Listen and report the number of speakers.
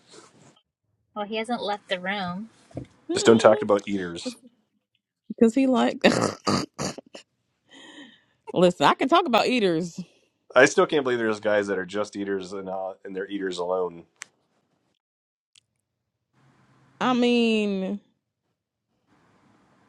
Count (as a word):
three